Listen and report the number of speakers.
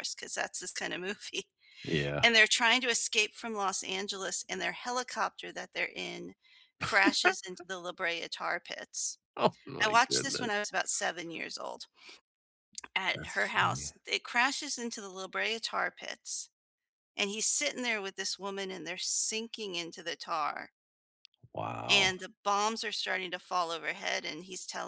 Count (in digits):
2